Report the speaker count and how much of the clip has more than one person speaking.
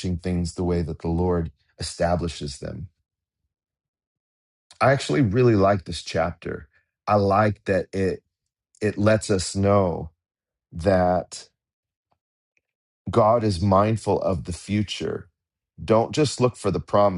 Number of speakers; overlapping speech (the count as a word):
one, no overlap